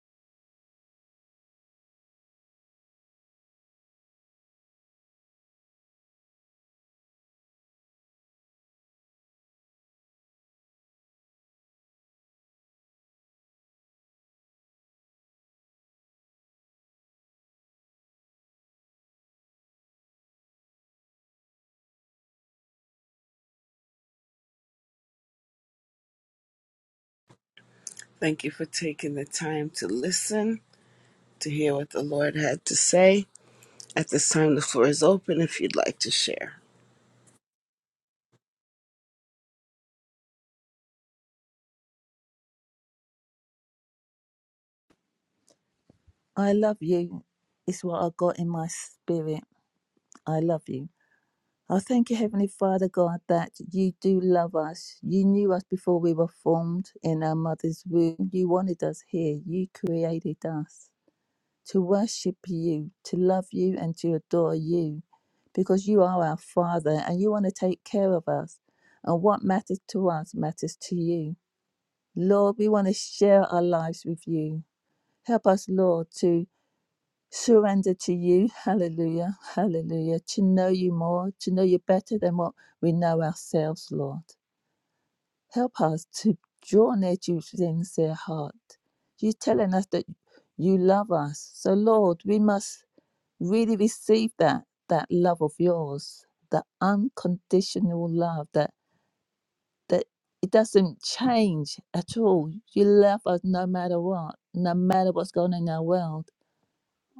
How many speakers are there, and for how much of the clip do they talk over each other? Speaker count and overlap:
two, no overlap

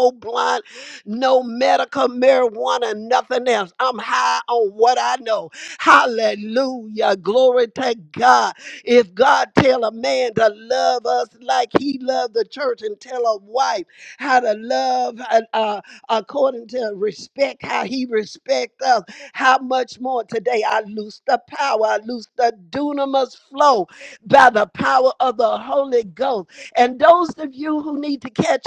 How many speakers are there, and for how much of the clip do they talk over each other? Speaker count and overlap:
one, no overlap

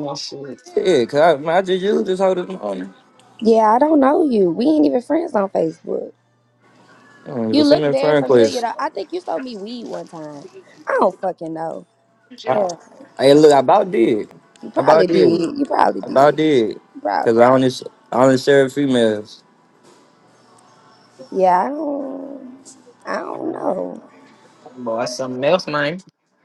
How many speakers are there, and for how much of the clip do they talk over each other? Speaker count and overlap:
three, about 9%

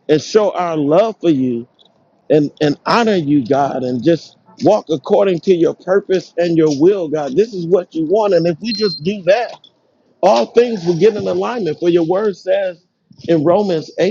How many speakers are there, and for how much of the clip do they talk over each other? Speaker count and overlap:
one, no overlap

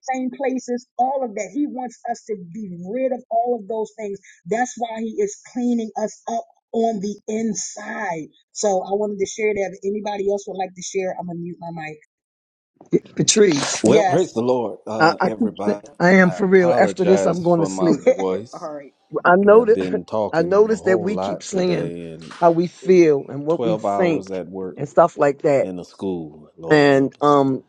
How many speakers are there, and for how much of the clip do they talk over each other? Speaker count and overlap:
three, about 24%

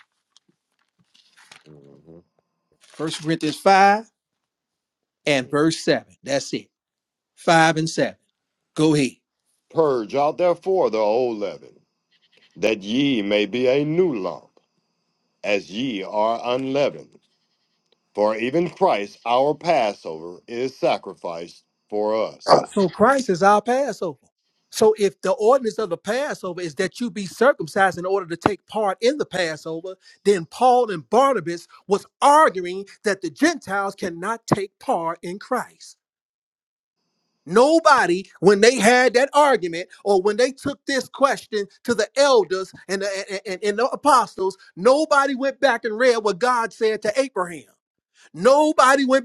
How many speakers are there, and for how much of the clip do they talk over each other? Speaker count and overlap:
two, under 1%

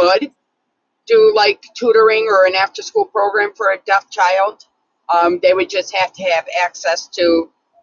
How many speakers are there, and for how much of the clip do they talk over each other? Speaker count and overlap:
one, no overlap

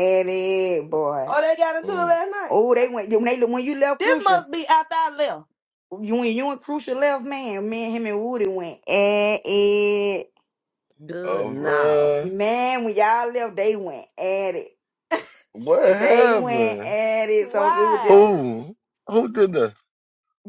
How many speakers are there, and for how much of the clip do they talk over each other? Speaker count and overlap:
three, about 18%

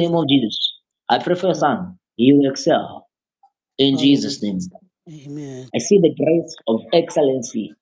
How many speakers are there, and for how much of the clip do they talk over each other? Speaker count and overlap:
two, about 7%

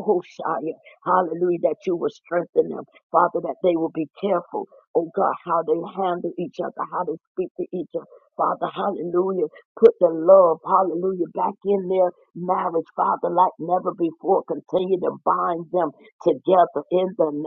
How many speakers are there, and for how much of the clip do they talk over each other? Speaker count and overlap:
one, no overlap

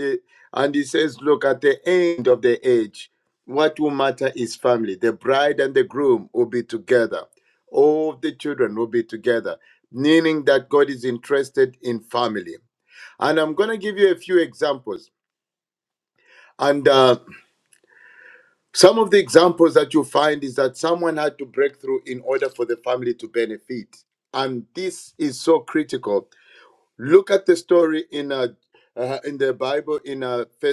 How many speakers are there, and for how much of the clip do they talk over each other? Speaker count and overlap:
one, no overlap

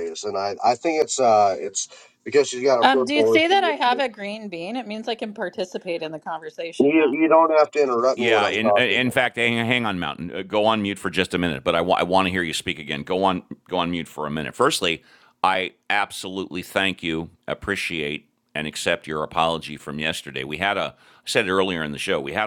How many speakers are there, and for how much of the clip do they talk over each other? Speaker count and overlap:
three, about 11%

